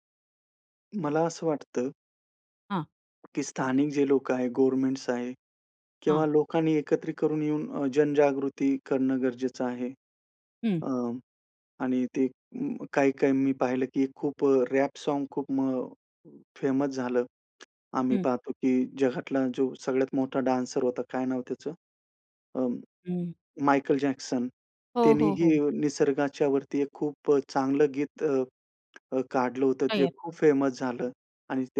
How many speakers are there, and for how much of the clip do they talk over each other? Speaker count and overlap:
two, about 4%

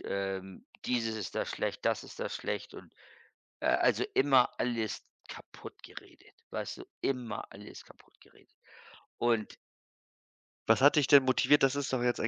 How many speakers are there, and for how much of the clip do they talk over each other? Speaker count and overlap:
two, under 1%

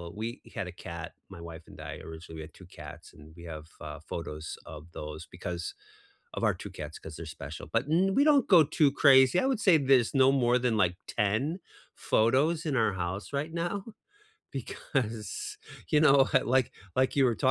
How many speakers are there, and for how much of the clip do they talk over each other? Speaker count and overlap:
one, no overlap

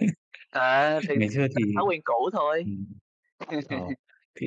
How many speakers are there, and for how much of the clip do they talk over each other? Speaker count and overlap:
two, about 1%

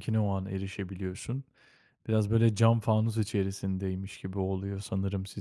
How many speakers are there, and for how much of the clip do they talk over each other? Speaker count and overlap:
one, no overlap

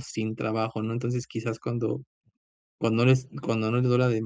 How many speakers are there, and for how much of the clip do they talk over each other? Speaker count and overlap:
one, no overlap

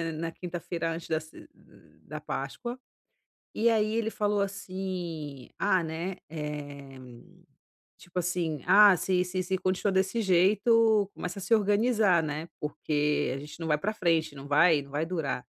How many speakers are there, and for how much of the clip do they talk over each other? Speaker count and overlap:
one, no overlap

